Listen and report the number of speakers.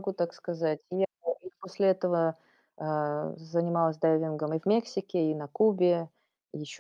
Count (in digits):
1